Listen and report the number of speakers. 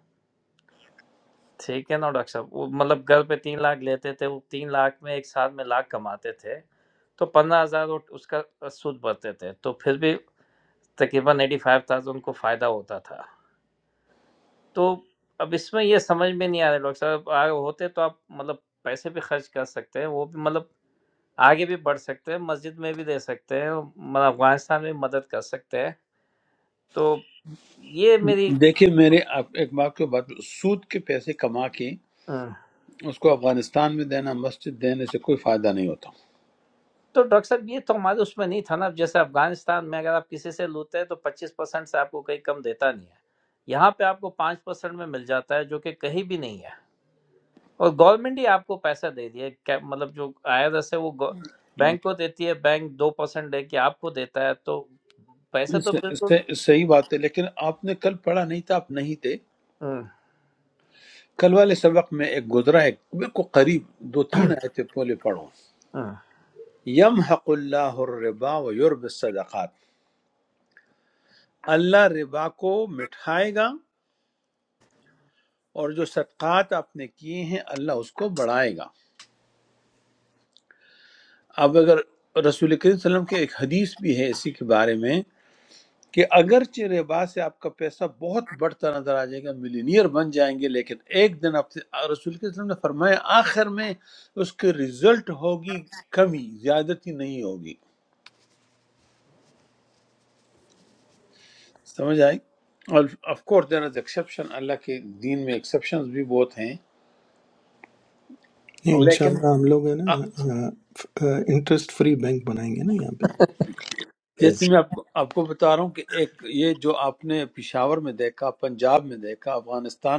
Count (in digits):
3